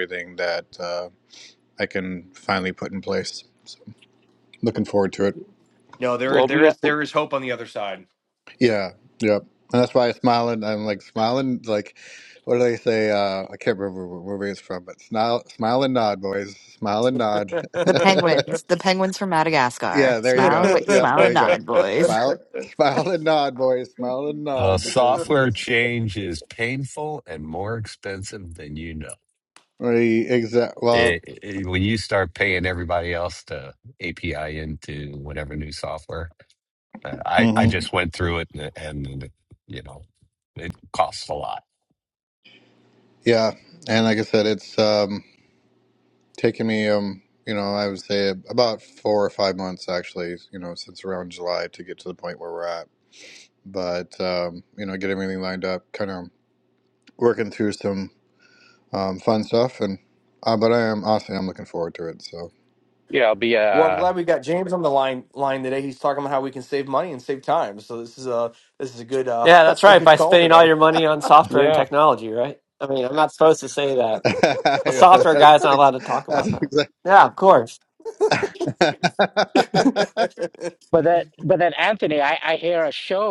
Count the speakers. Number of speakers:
six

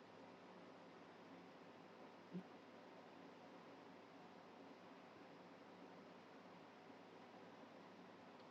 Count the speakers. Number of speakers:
zero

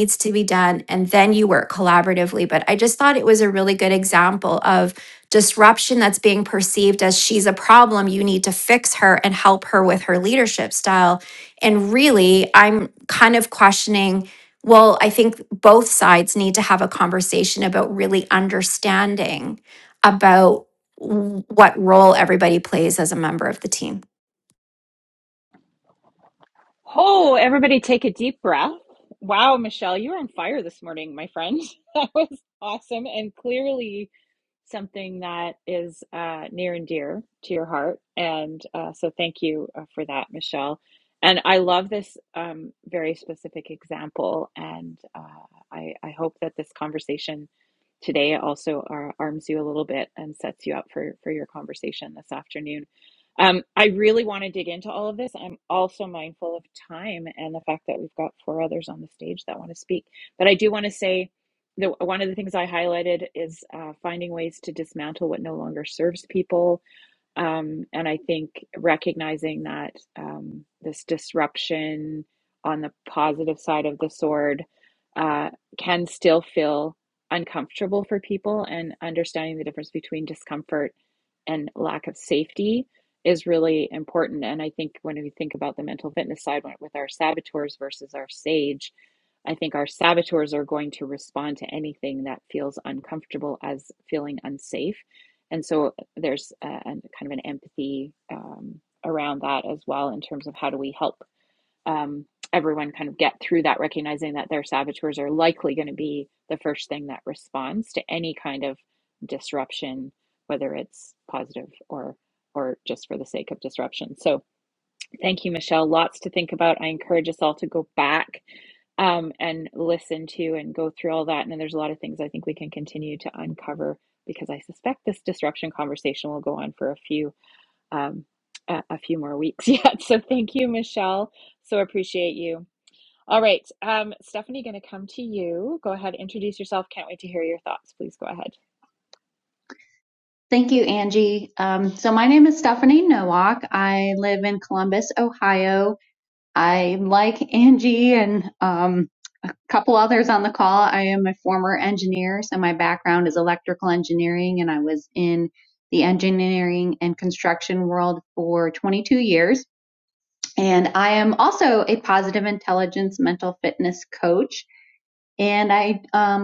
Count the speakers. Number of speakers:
three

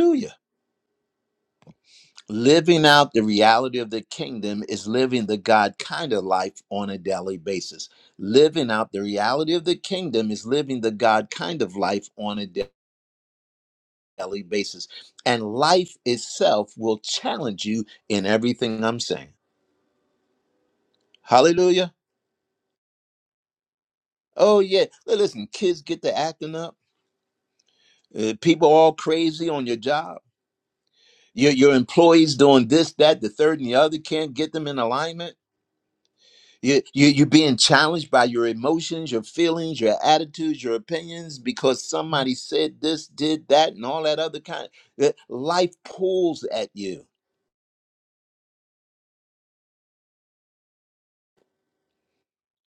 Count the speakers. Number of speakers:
one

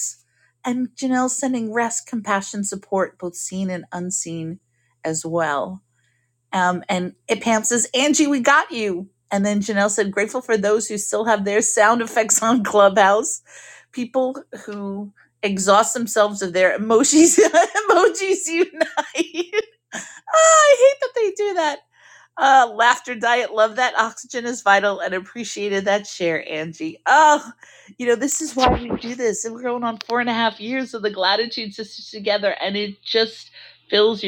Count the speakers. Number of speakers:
one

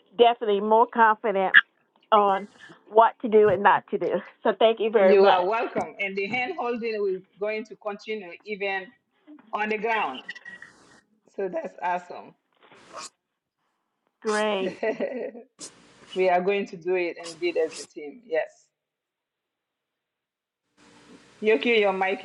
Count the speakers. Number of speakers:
two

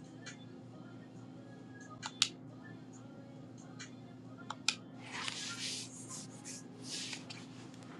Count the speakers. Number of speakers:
zero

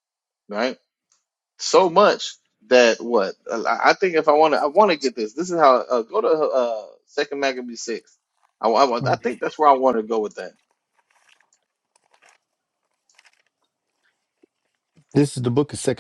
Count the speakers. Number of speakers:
two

